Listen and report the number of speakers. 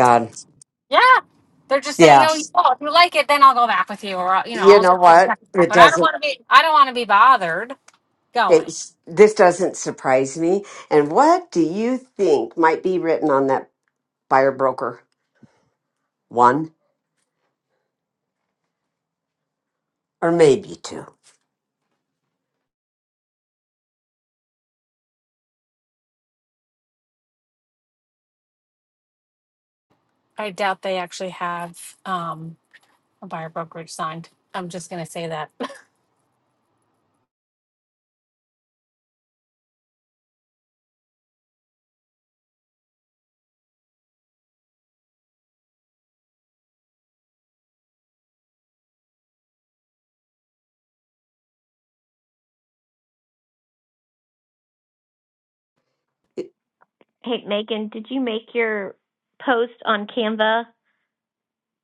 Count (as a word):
three